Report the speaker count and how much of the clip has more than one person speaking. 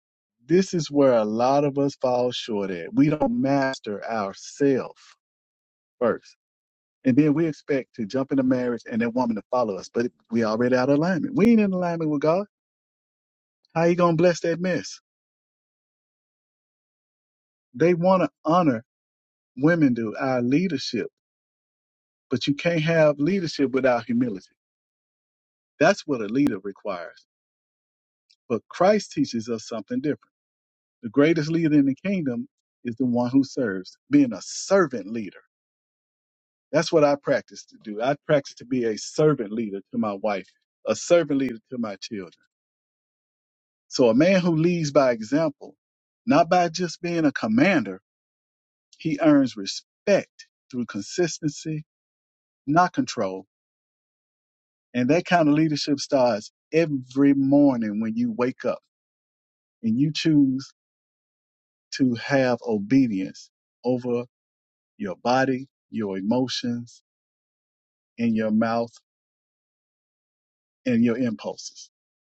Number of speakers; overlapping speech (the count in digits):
1, no overlap